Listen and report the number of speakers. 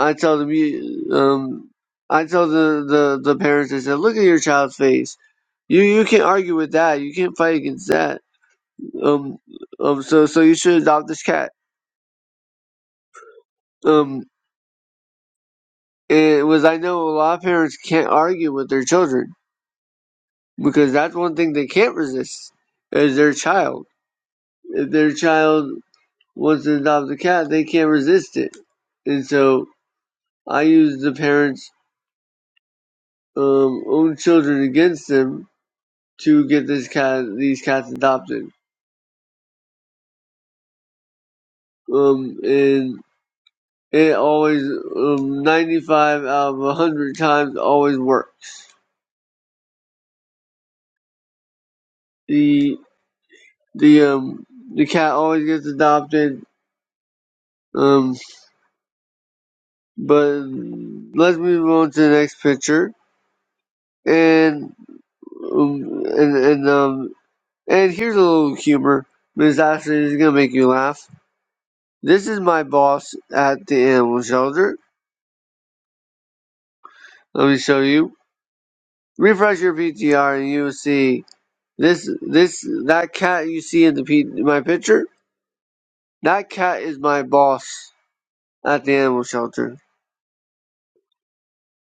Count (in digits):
1